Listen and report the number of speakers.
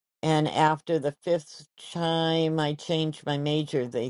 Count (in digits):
1